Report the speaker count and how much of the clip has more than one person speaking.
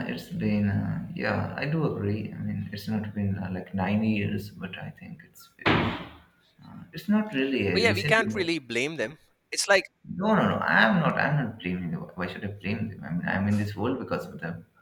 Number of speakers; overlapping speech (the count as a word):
two, about 5%